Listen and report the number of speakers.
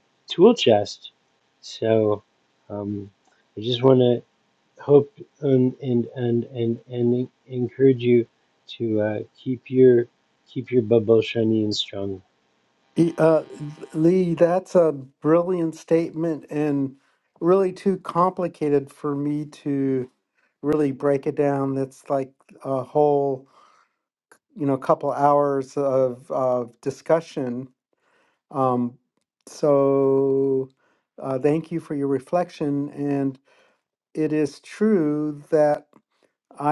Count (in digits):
2